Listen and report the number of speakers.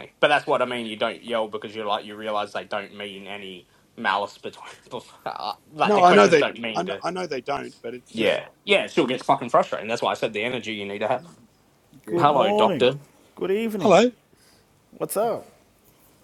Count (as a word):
three